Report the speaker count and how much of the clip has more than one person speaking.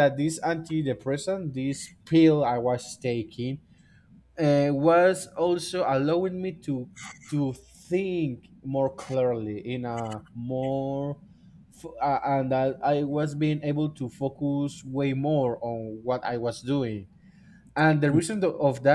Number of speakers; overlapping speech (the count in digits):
1, no overlap